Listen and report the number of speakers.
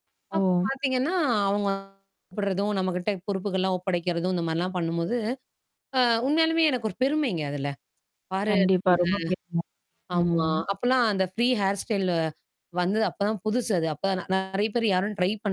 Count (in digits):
2